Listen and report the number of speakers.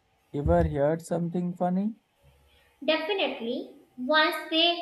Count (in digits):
2